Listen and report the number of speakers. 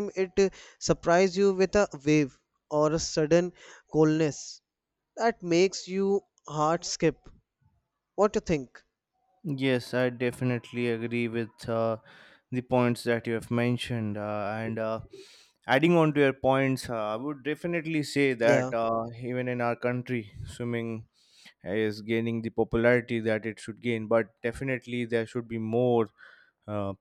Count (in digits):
2